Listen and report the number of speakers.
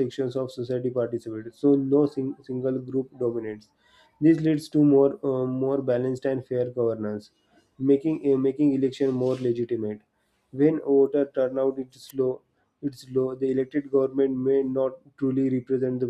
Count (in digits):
1